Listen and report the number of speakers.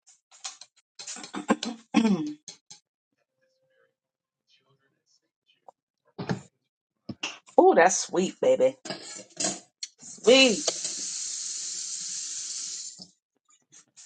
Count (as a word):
one